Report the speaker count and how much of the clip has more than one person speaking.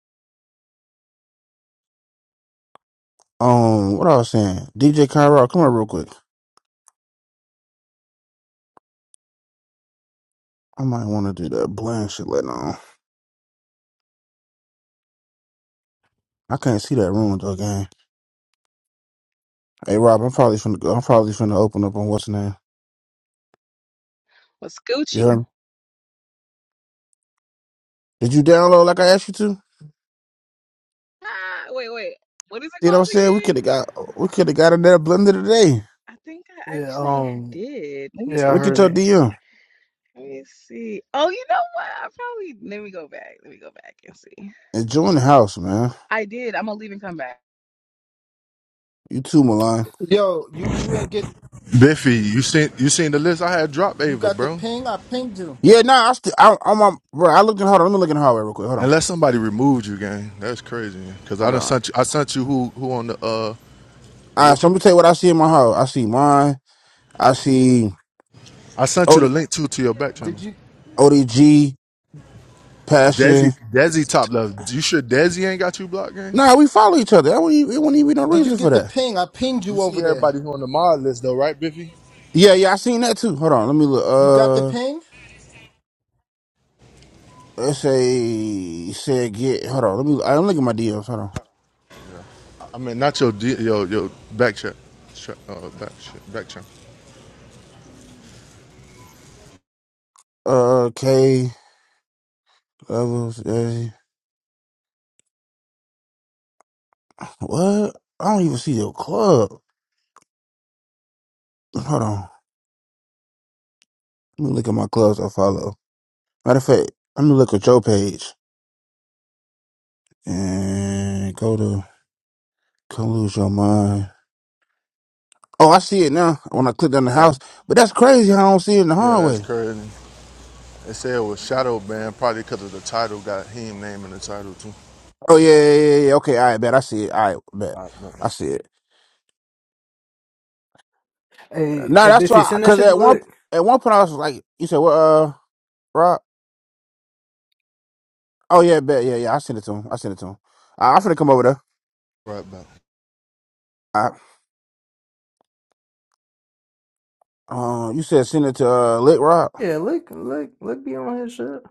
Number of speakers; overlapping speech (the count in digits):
5, about 5%